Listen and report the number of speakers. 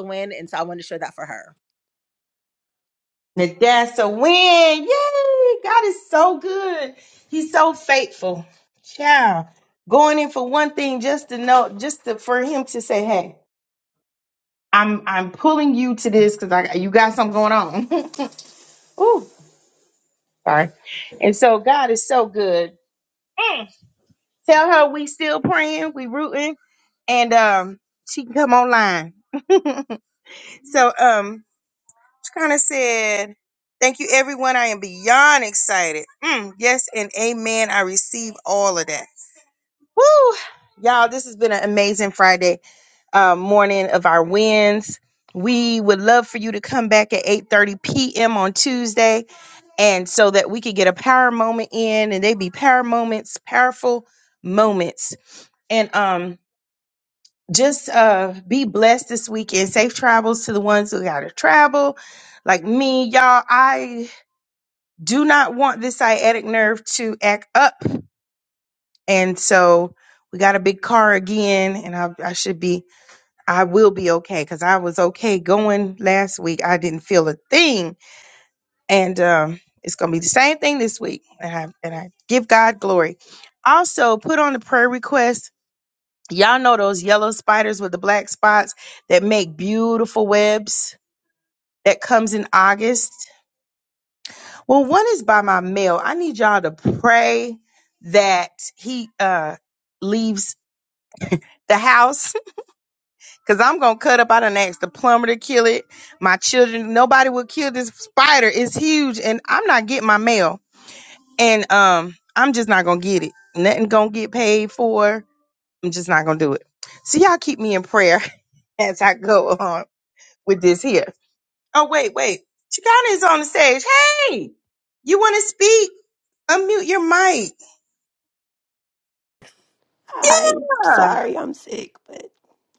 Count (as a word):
three